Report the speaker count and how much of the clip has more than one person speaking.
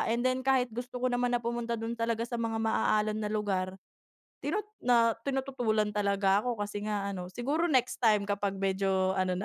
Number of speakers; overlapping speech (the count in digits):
1, no overlap